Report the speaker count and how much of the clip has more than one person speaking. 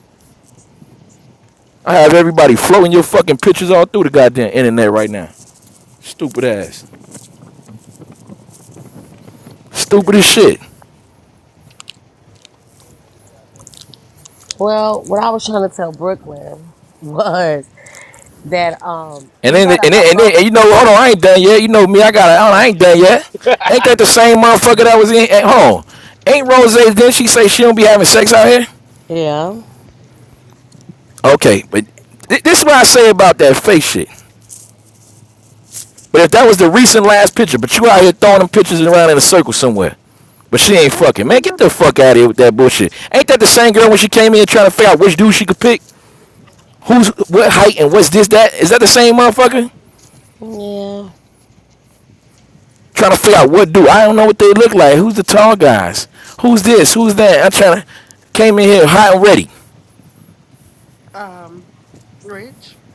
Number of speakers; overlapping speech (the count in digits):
3, about 5%